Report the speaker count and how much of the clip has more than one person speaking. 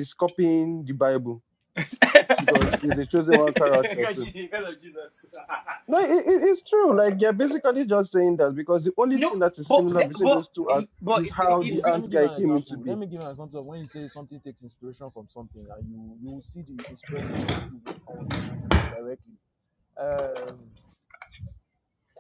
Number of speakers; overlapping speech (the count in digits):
3, about 17%